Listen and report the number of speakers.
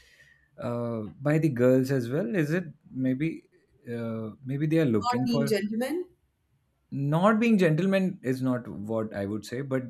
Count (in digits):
2